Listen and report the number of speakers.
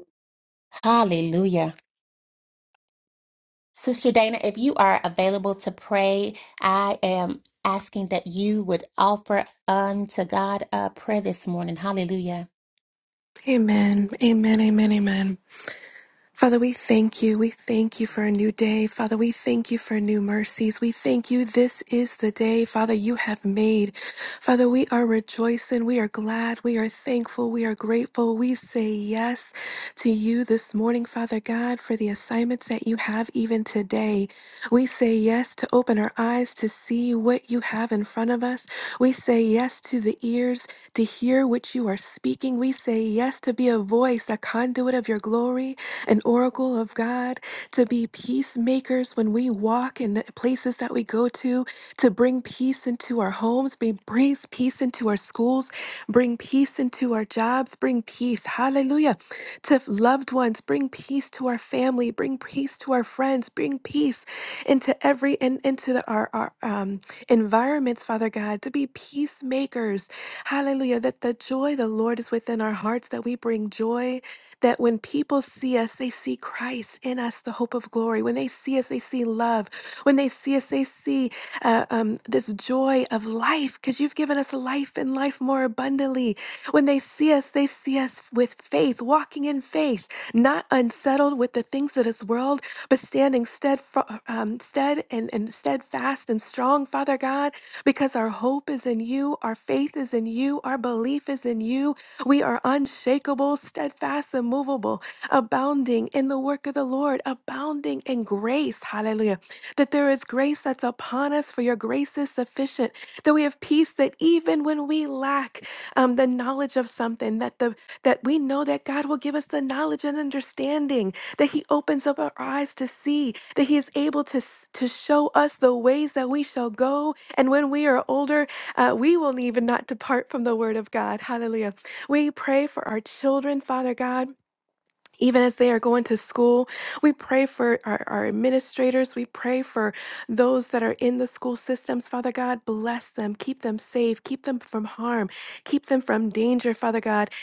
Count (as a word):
two